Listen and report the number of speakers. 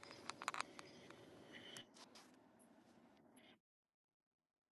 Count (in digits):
0